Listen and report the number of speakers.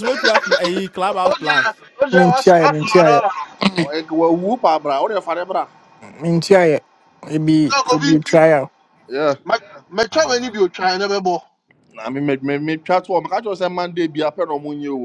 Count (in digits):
4